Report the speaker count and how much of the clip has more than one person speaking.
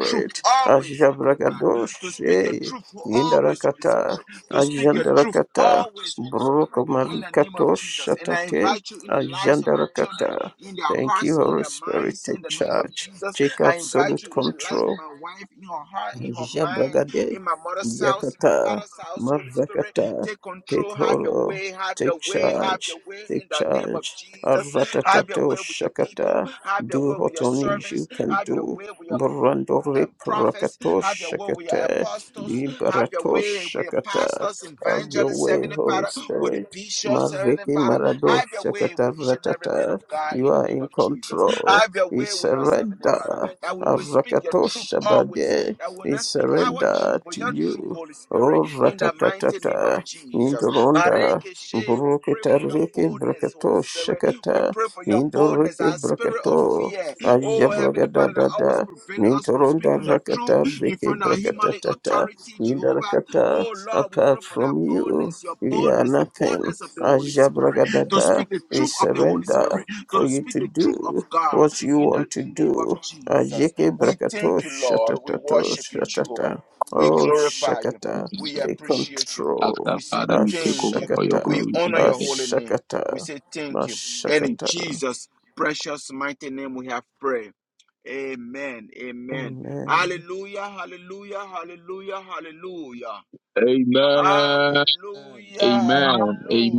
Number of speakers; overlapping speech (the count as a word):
three, about 72%